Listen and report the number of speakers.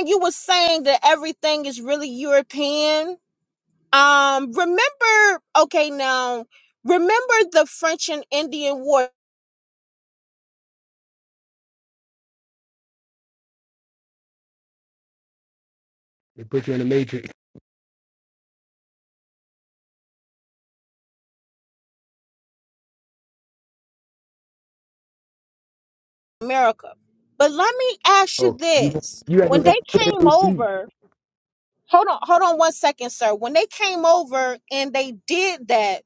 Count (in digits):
2